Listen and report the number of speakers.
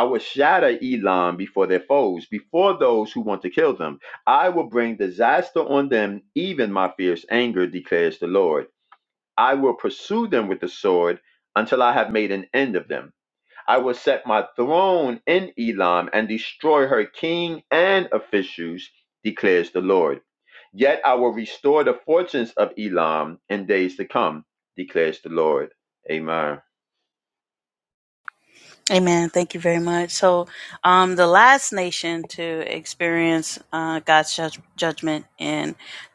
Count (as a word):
two